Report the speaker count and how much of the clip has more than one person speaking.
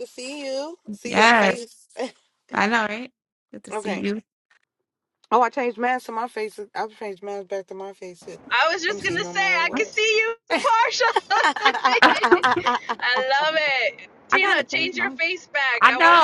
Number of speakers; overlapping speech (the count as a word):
three, about 20%